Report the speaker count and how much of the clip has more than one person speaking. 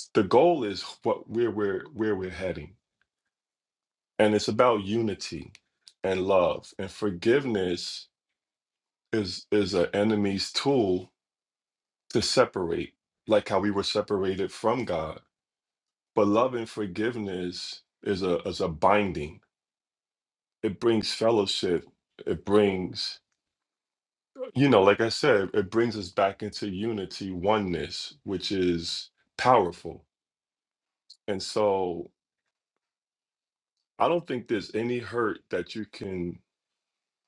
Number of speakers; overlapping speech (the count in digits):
1, no overlap